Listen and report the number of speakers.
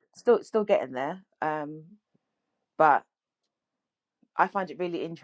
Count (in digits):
1